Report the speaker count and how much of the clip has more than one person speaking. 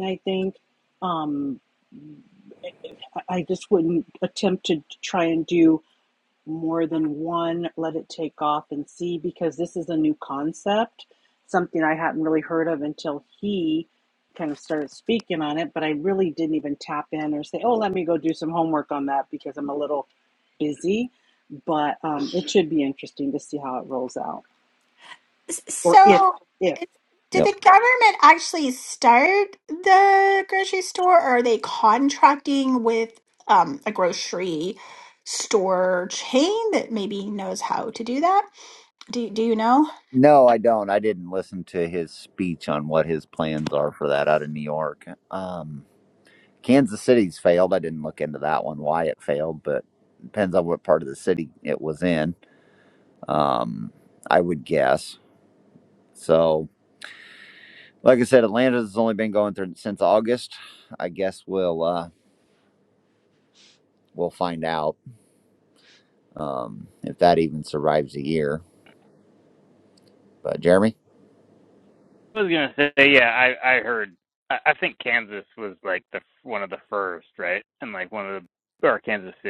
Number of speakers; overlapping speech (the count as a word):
four, about 1%